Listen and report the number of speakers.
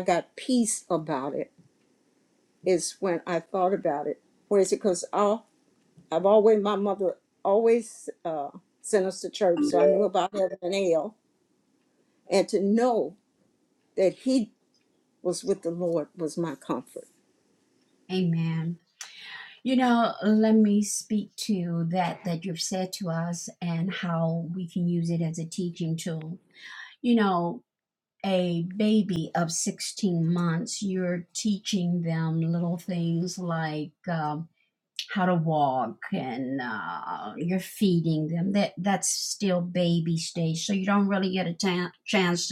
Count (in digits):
2